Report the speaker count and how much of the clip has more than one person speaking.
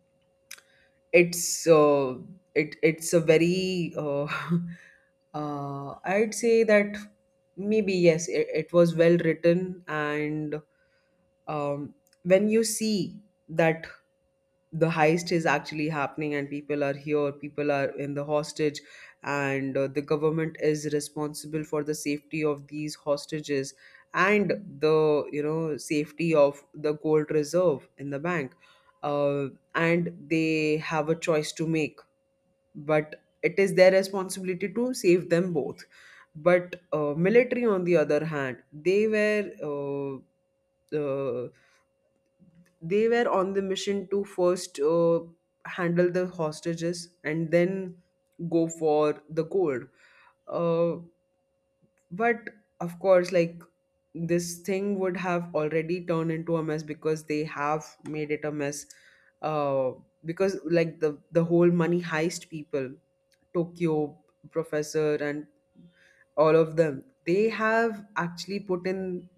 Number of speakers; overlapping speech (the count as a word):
one, no overlap